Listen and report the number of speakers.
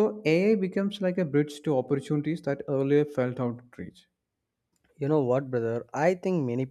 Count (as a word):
two